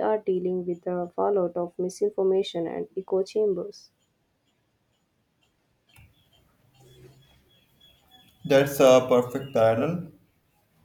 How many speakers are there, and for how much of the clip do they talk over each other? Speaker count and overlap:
2, no overlap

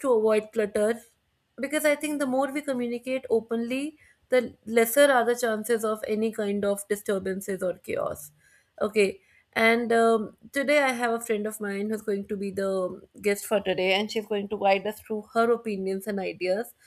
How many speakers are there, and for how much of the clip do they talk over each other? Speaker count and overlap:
1, no overlap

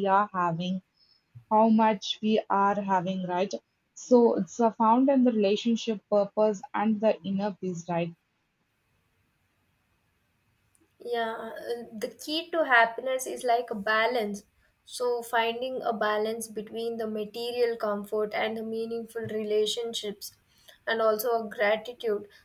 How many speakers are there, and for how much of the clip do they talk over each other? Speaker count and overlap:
2, no overlap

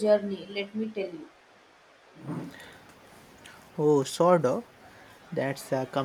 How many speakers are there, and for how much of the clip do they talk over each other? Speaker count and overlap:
2, no overlap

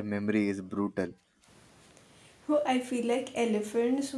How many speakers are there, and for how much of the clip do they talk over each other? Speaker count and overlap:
2, no overlap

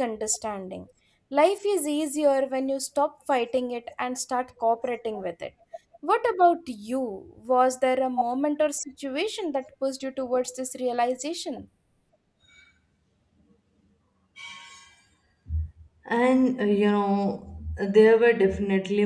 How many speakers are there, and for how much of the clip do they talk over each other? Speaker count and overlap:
2, no overlap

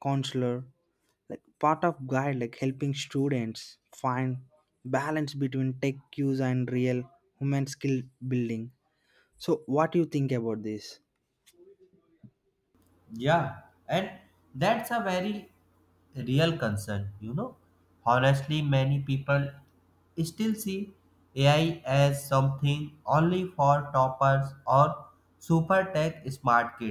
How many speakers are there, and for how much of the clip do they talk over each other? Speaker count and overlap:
2, no overlap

